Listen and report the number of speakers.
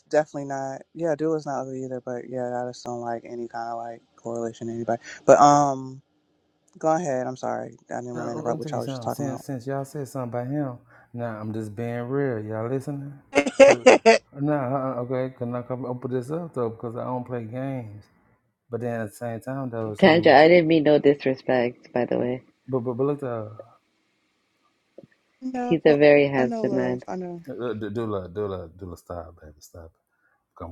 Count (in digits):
3